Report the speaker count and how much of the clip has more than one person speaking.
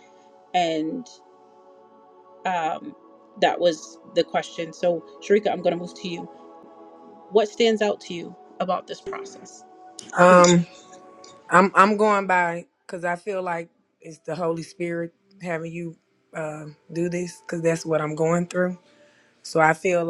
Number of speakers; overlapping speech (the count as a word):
two, no overlap